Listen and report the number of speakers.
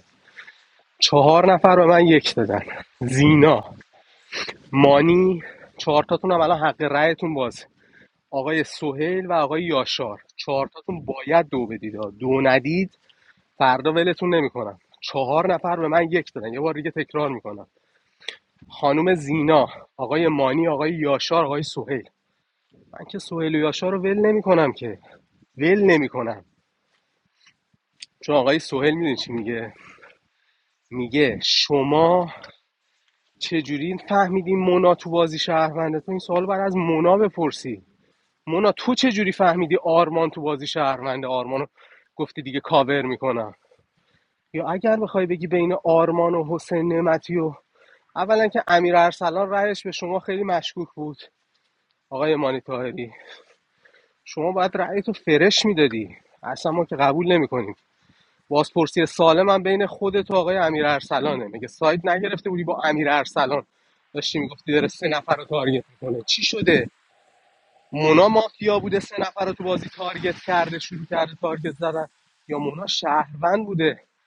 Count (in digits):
1